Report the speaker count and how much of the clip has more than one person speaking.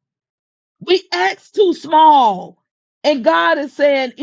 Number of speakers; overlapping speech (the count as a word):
one, no overlap